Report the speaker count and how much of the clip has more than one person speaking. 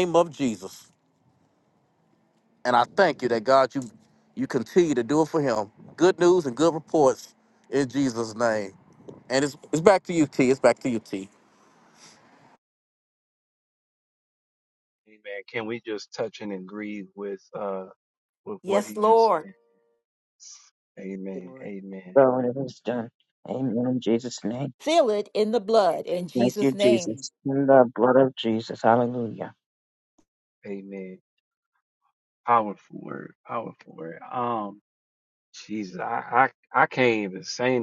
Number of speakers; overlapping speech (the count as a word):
four, about 5%